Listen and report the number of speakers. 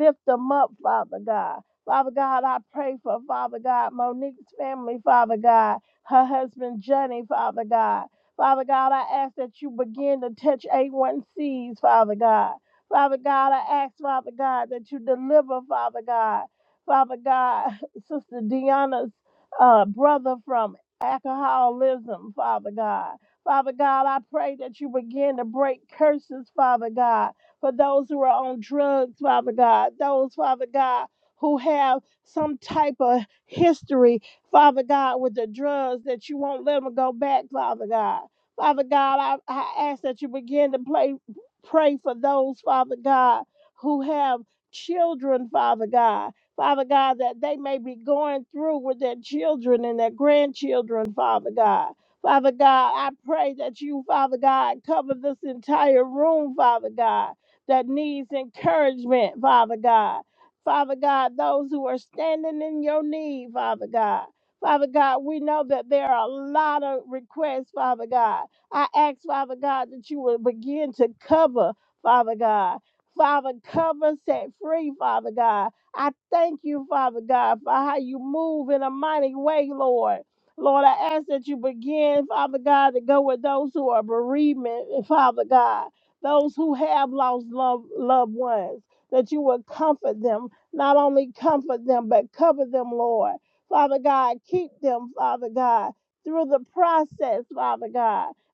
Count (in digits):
1